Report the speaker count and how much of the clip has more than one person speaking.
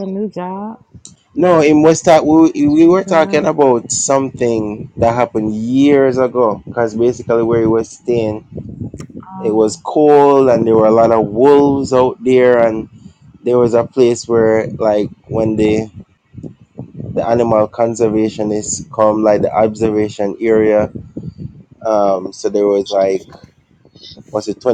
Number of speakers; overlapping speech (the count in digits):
2, about 3%